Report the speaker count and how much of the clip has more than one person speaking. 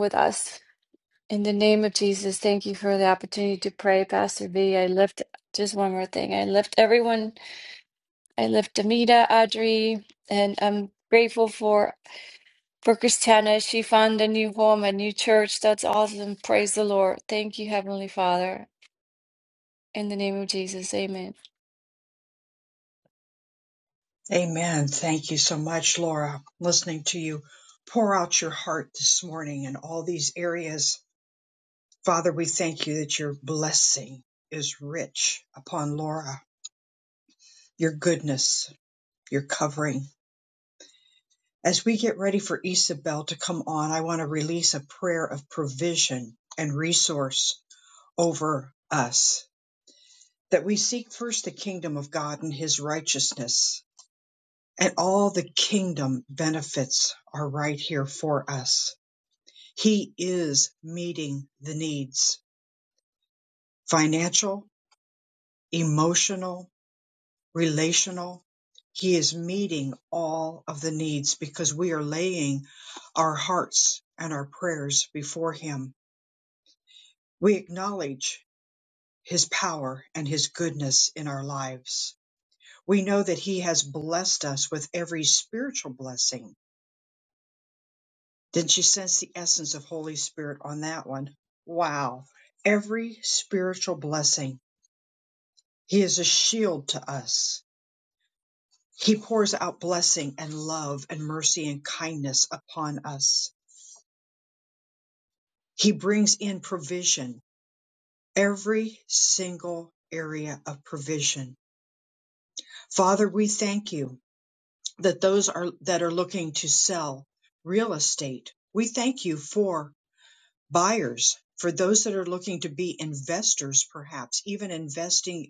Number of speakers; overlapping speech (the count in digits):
2, no overlap